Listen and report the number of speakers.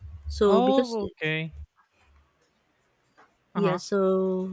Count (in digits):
2